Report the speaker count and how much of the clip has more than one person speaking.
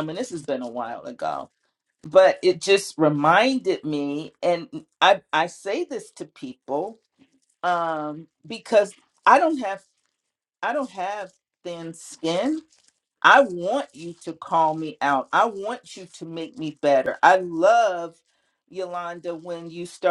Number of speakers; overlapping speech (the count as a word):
one, no overlap